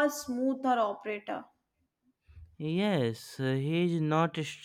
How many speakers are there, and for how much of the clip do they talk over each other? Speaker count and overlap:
2, no overlap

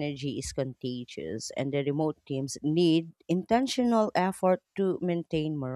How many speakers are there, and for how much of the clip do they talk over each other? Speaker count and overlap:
1, no overlap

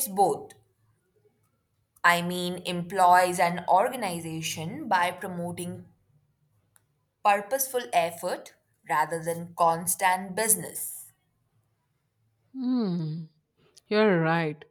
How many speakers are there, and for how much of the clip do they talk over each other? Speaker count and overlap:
2, no overlap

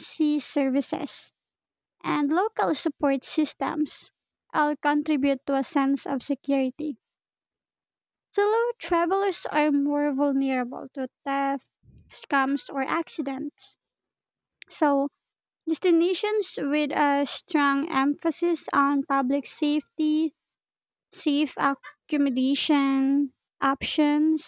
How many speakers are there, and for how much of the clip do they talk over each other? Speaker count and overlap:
1, no overlap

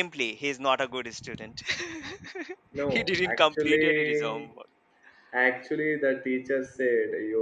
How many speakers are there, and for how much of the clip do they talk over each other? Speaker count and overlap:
2, about 20%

